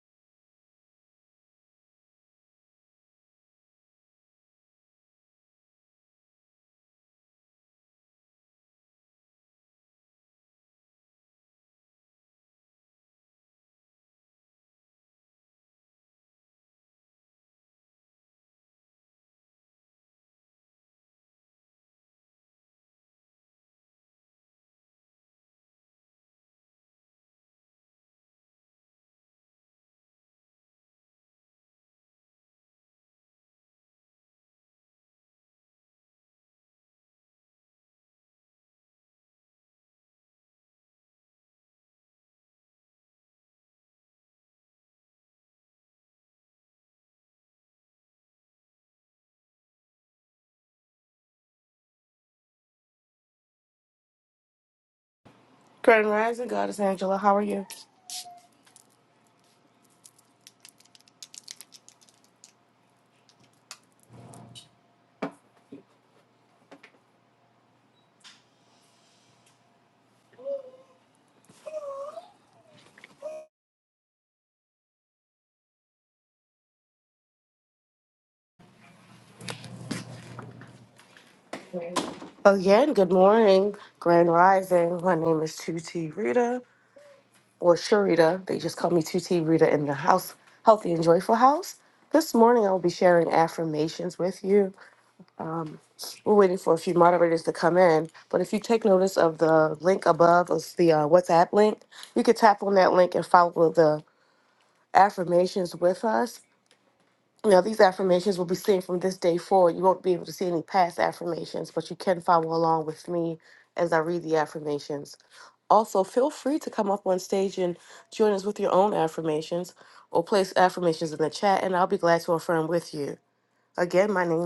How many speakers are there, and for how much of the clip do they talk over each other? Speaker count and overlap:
1, no overlap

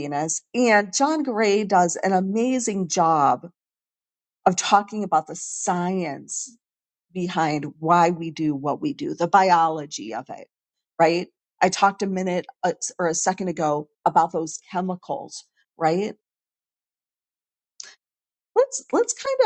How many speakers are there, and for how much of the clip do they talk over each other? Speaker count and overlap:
1, no overlap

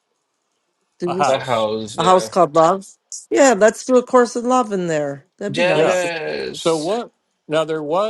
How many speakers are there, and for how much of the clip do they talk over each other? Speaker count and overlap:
3, about 19%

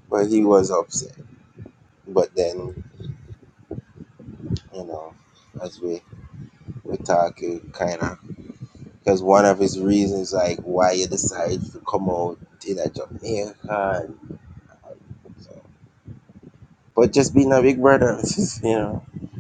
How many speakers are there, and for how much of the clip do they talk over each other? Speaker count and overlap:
1, no overlap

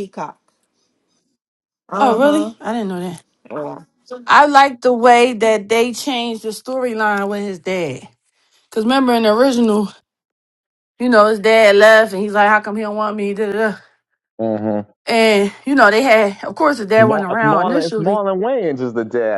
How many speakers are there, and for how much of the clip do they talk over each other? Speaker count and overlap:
3, about 9%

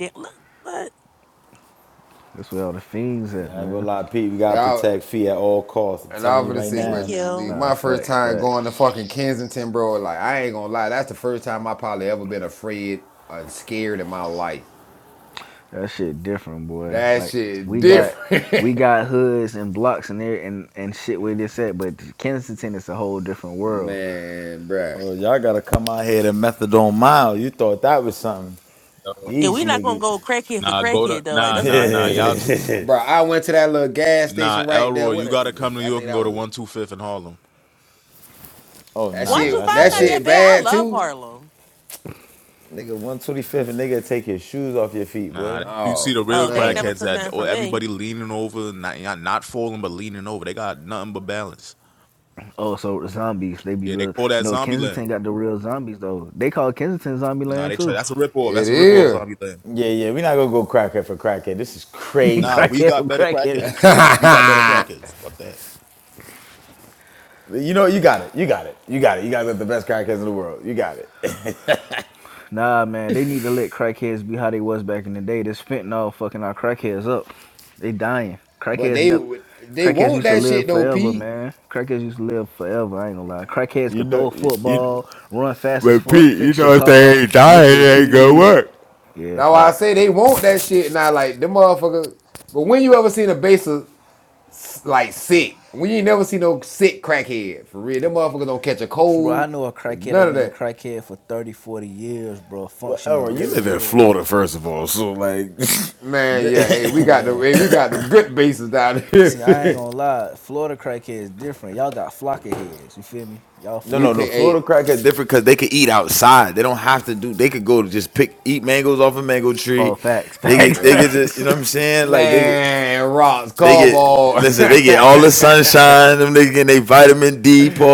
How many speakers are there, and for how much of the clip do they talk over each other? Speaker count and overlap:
5, about 23%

